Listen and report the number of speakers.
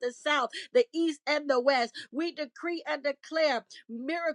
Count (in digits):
1